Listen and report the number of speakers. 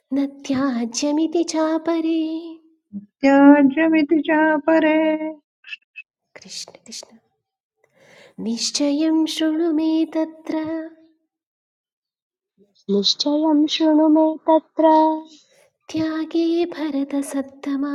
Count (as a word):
three